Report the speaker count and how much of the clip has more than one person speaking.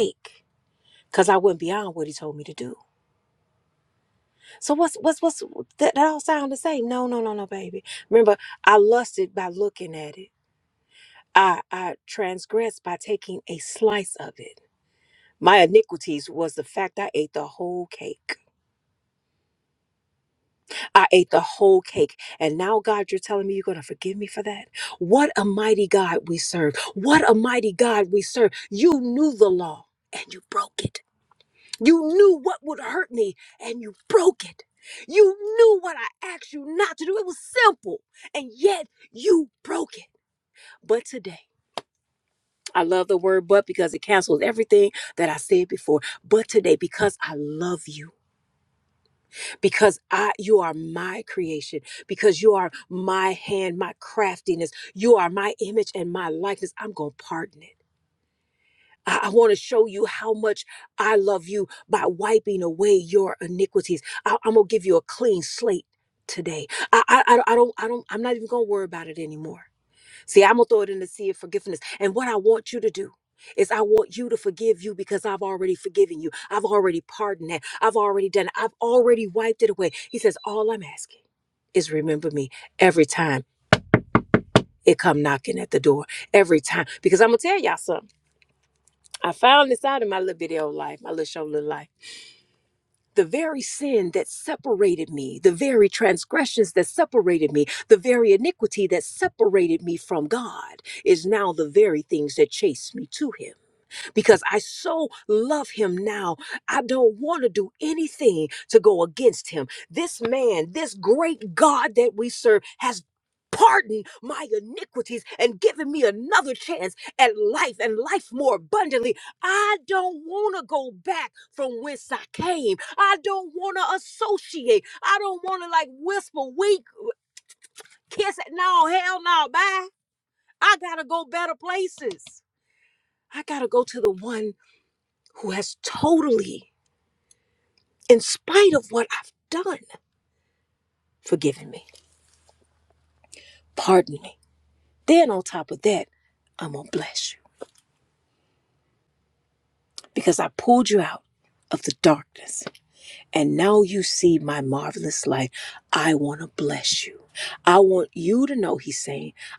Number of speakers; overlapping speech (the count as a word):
one, no overlap